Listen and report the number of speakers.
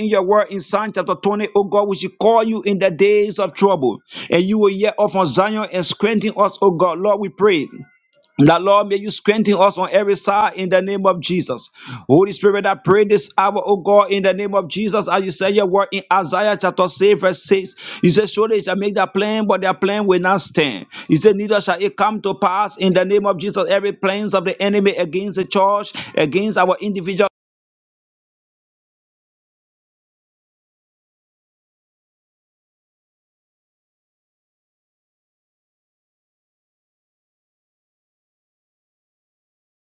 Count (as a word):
one